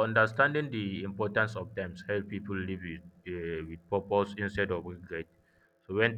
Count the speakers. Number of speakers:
1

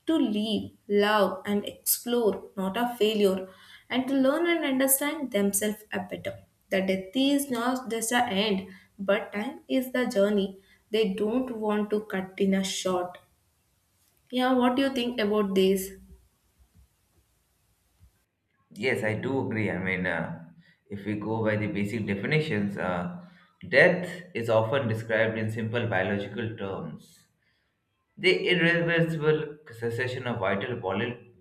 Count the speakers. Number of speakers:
2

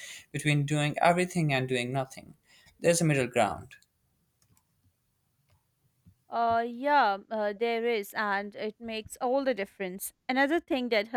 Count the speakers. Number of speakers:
2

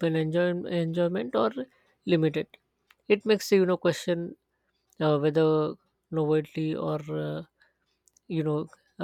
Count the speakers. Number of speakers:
1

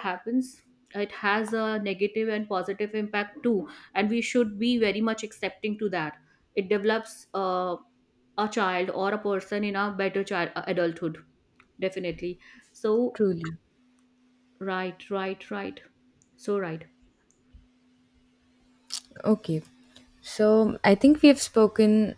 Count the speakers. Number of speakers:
2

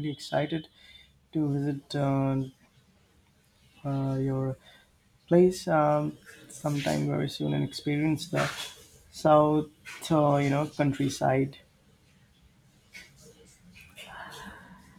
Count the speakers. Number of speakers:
1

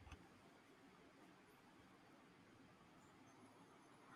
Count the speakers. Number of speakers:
0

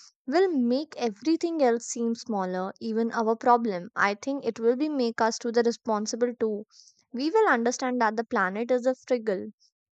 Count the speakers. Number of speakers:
1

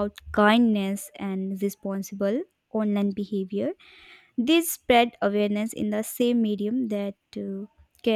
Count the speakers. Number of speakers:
1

